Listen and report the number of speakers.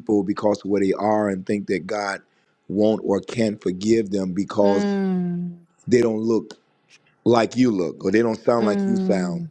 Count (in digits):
2